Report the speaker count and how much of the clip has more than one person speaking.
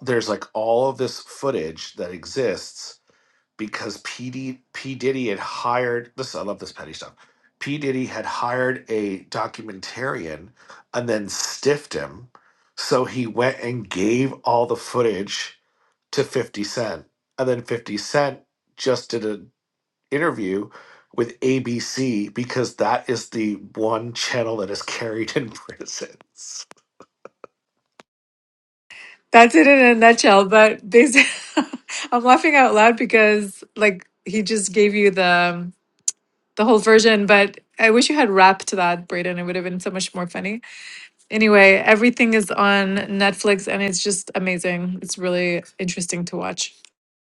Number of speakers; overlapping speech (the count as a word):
two, no overlap